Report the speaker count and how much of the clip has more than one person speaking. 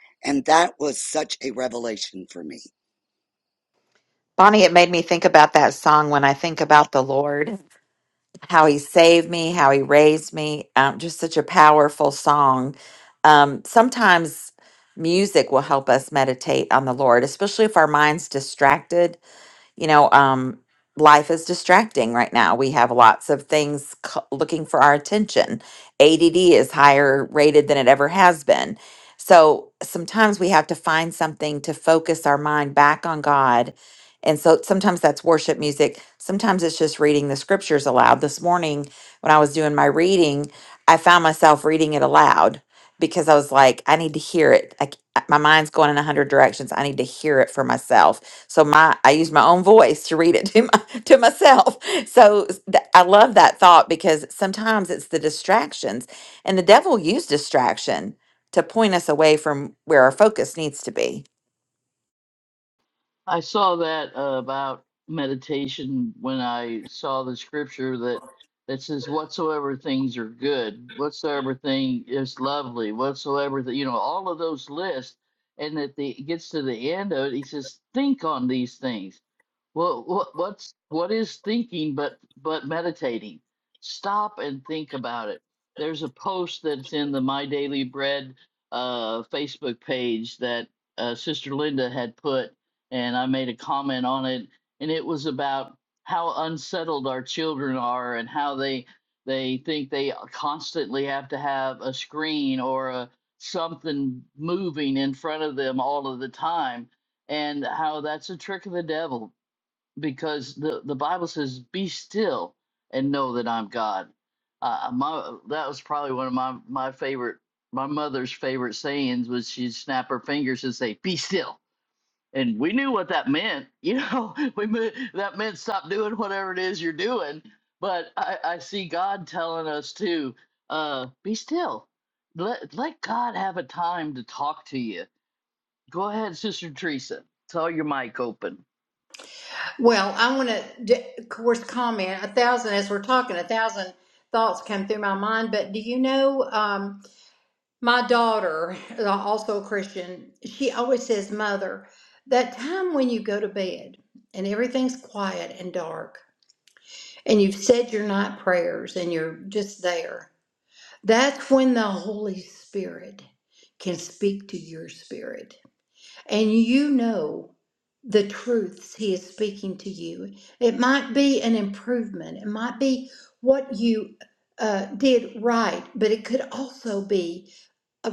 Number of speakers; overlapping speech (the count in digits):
4, no overlap